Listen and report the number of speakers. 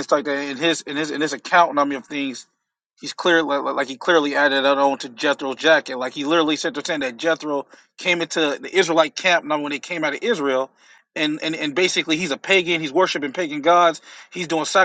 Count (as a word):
one